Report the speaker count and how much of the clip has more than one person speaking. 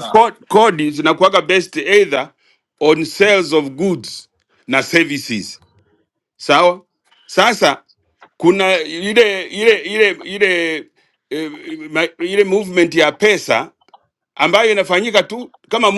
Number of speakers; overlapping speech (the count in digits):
1, no overlap